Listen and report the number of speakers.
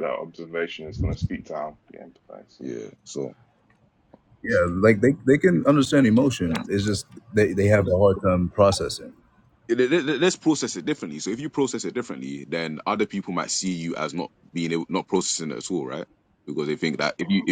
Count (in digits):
3